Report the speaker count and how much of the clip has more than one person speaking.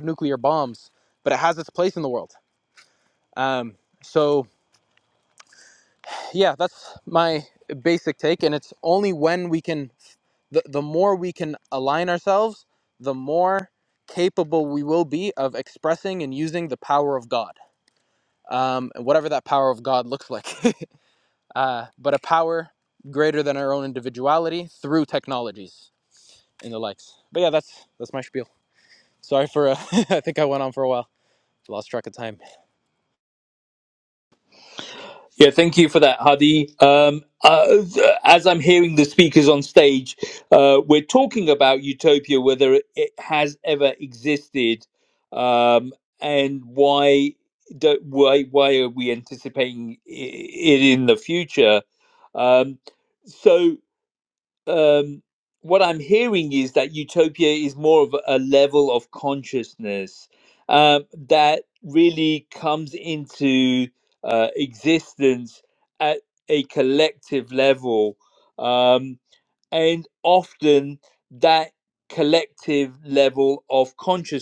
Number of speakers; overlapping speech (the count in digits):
2, no overlap